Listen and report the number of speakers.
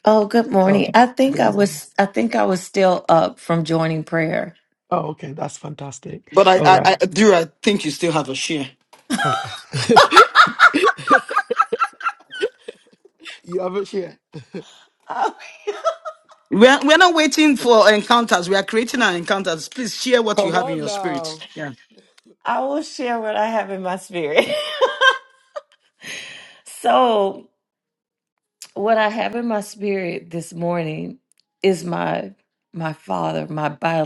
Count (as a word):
three